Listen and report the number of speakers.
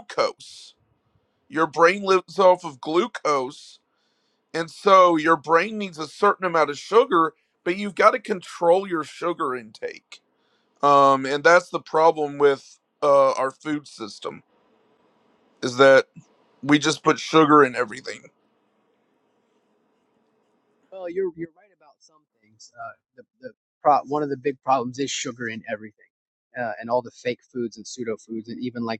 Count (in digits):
2